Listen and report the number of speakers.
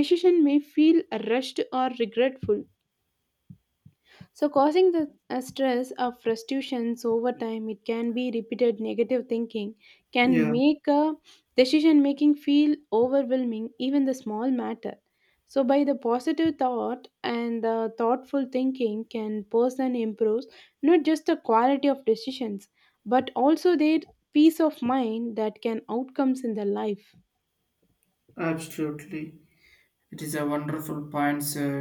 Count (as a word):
two